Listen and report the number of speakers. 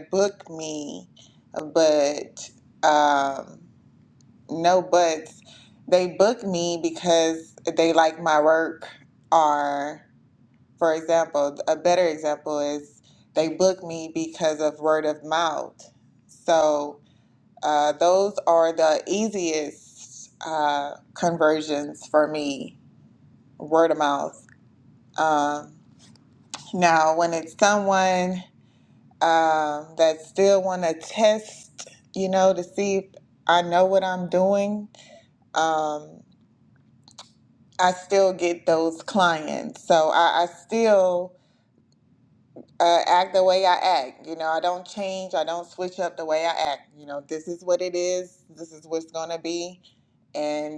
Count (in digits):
1